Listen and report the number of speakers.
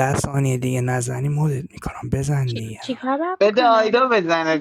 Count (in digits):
3